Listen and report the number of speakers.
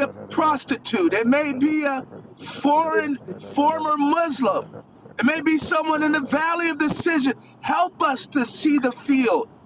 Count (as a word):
one